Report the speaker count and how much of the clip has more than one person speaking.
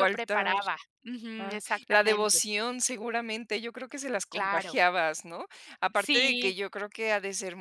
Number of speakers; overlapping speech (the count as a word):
two, about 34%